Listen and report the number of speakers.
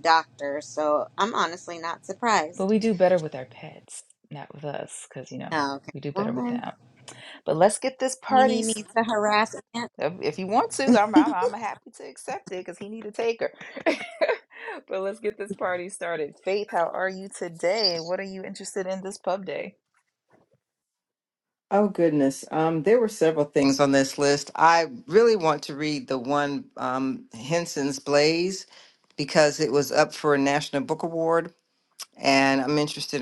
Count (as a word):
three